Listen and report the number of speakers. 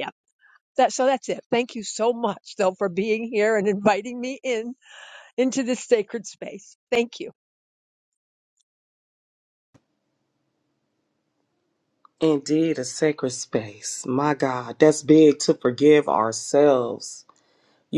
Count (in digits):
2